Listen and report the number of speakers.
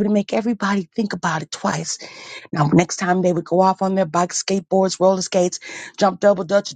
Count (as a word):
one